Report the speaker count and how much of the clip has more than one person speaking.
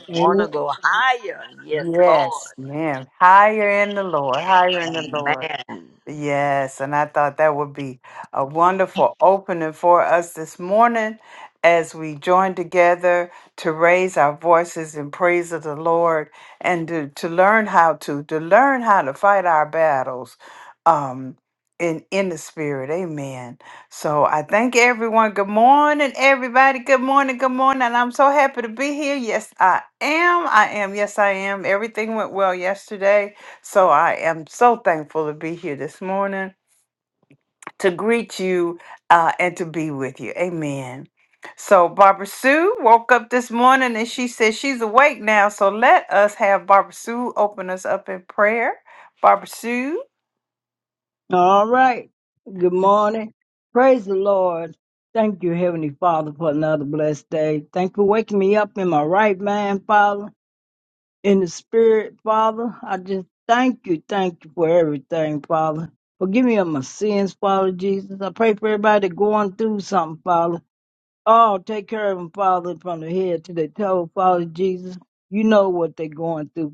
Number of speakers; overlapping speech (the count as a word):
three, about 2%